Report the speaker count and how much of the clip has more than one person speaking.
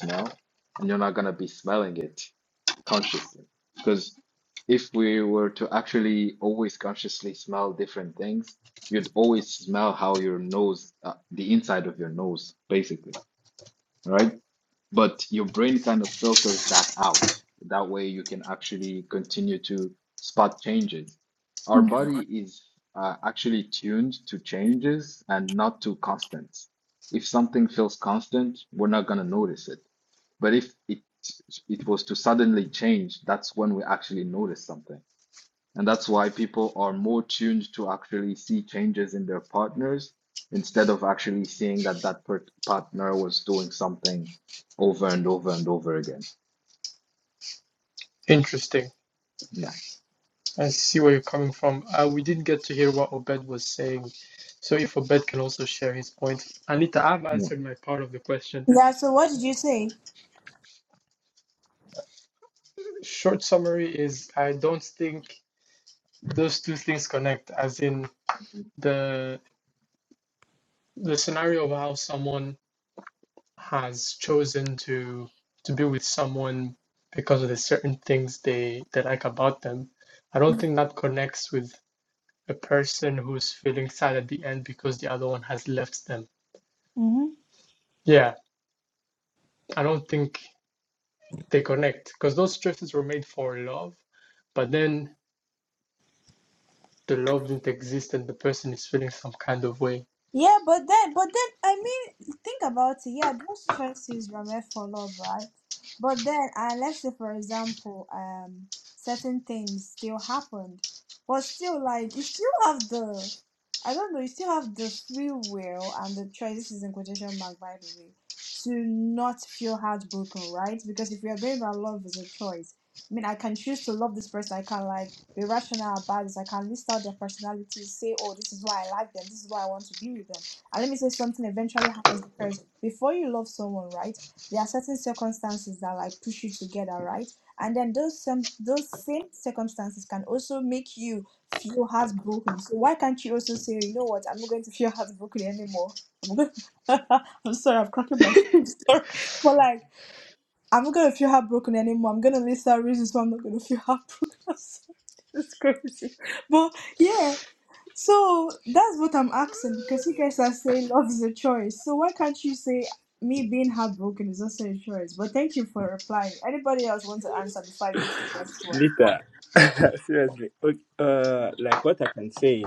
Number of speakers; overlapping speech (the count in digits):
4, under 1%